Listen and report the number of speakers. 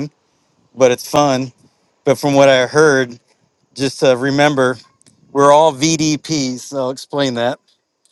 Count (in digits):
1